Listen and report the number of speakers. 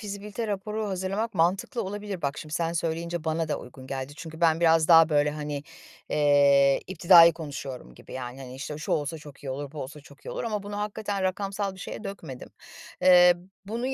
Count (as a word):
one